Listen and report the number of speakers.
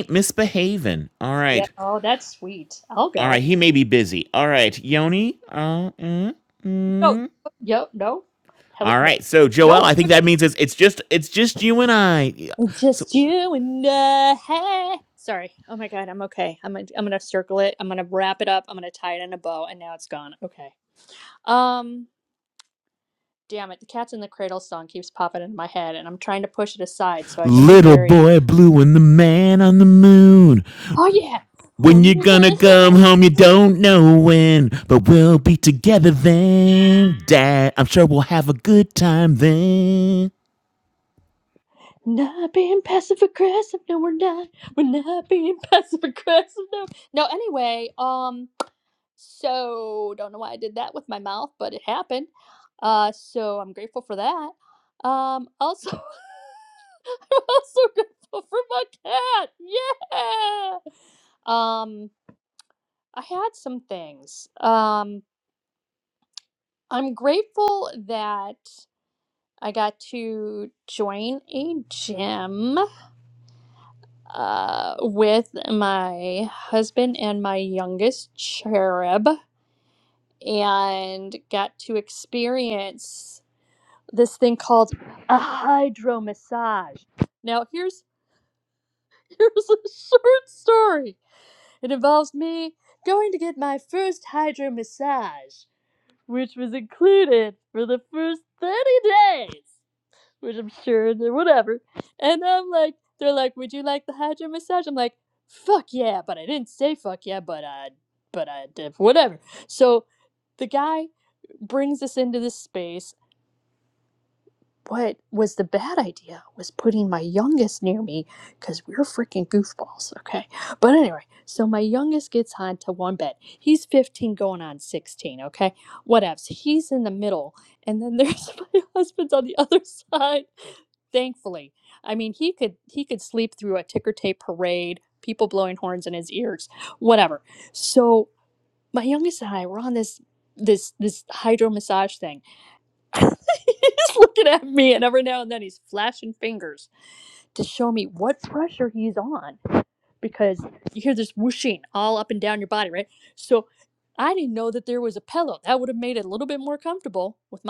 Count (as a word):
two